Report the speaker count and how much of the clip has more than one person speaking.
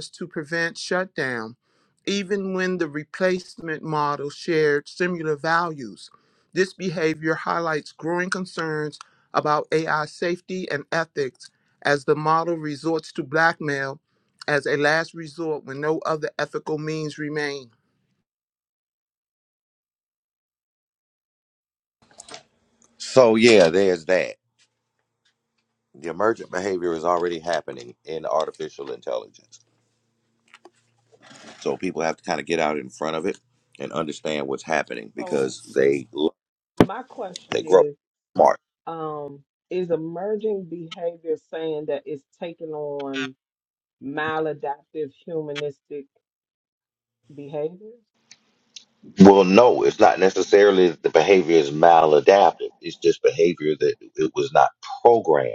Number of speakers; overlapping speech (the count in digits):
3, about 1%